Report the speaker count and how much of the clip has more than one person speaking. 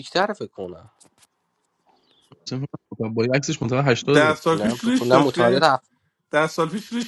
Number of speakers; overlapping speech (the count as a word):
three, about 19%